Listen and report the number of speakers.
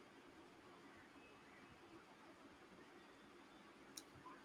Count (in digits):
0